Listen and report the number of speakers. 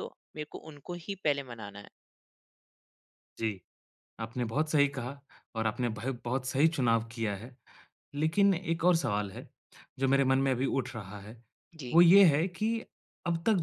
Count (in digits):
2